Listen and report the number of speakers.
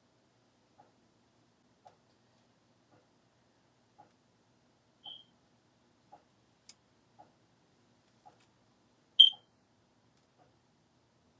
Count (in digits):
0